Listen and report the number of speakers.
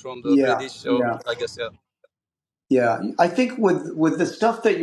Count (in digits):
2